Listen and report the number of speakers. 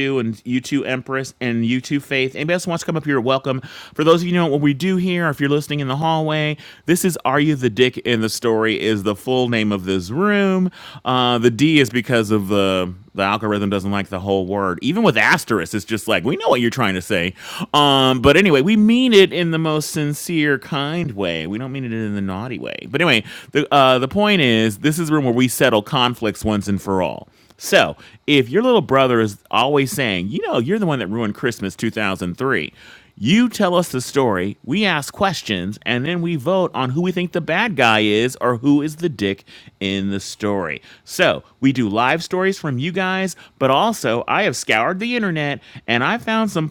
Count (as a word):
one